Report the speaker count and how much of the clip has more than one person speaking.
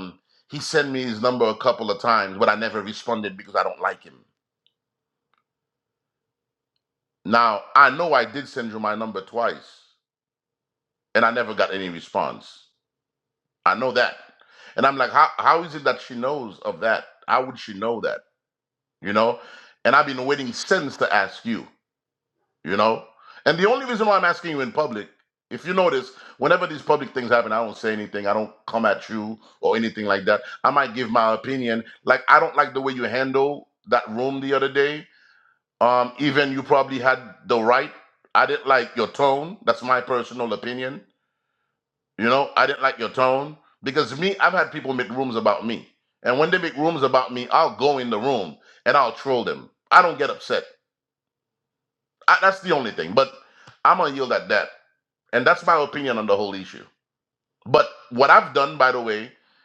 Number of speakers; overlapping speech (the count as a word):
one, no overlap